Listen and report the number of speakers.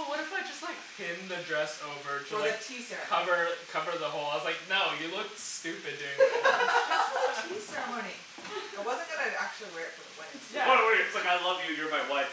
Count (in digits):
3